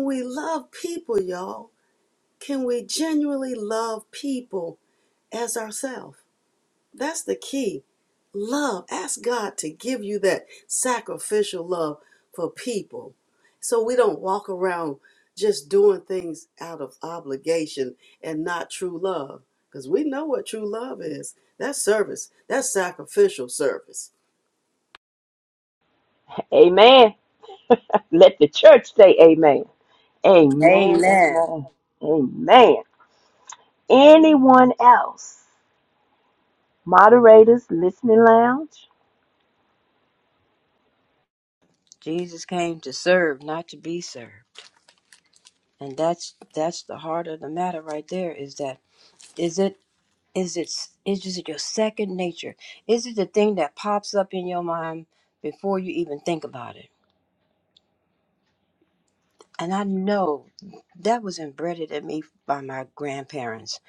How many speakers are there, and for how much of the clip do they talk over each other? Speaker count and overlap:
3, about 1%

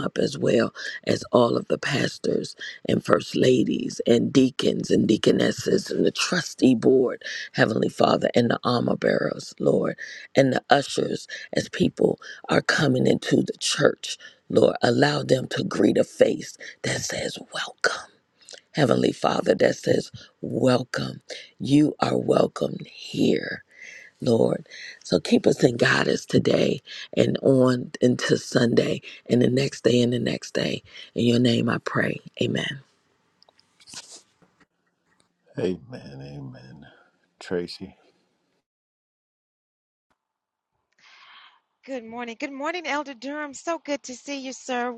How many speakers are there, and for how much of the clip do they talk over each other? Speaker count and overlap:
3, no overlap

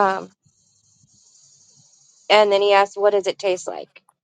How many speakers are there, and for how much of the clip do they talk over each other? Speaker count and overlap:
1, no overlap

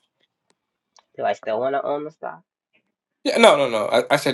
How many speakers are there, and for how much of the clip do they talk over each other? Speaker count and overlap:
2, no overlap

